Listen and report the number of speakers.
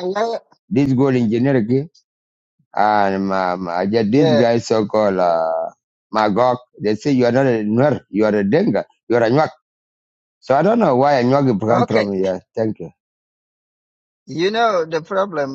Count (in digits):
2